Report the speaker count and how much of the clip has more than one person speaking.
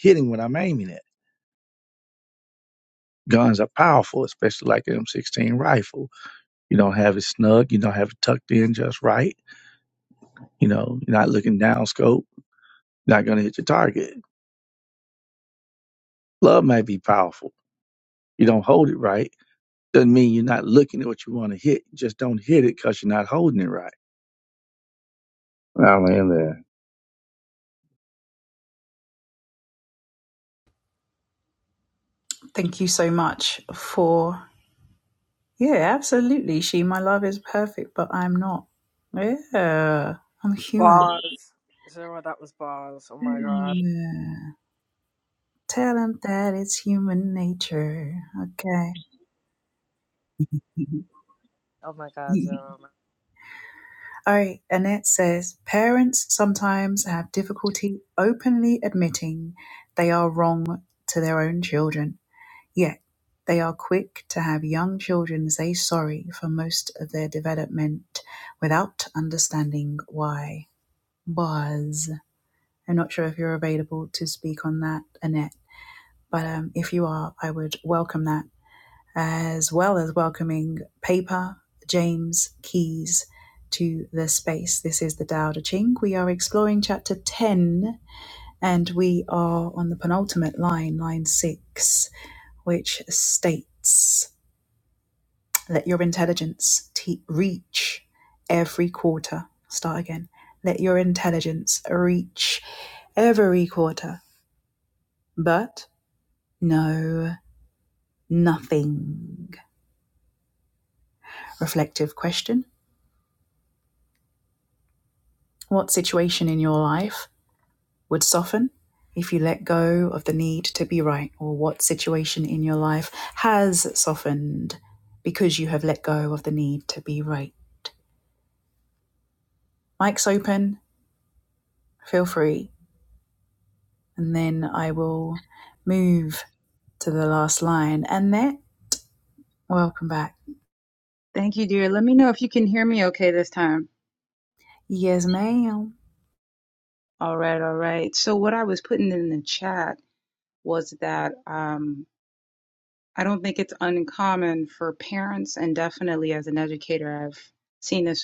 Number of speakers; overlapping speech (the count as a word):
four, about 1%